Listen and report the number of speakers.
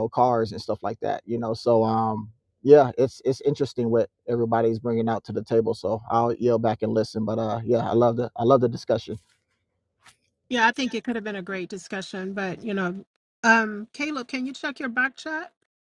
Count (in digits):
2